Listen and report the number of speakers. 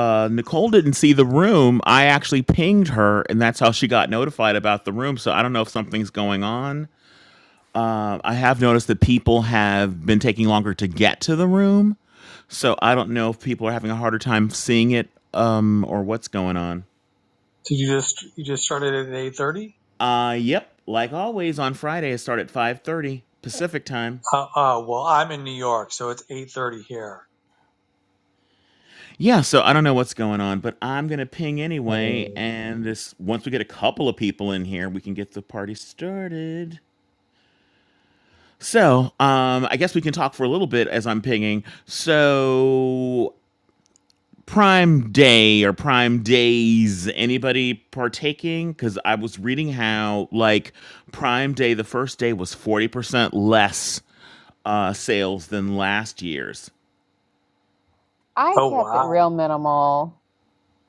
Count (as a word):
three